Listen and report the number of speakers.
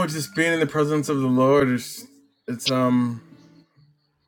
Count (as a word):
one